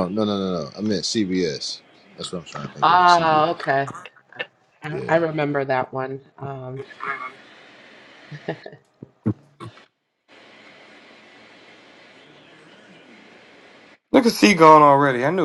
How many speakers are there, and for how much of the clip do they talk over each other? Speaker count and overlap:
three, about 7%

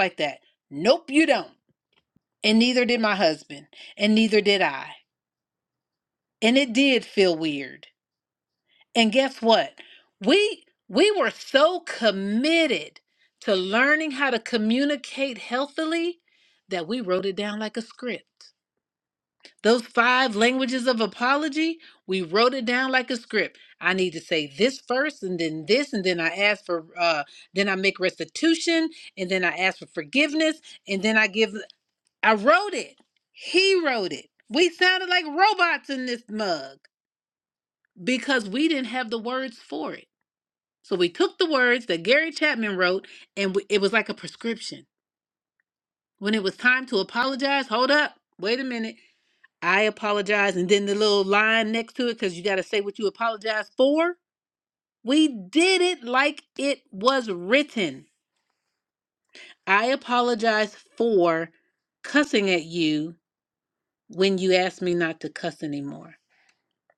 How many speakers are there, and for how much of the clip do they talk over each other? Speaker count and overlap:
one, no overlap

